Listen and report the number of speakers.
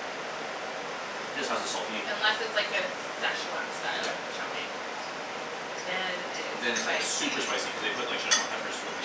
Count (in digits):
2